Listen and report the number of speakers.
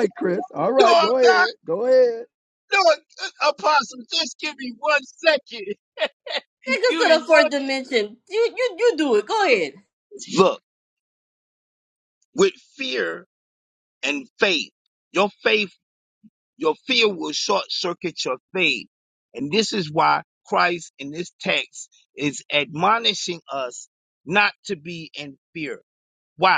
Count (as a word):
three